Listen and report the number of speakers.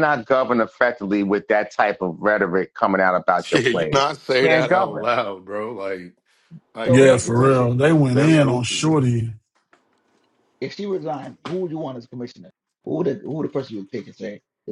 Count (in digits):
4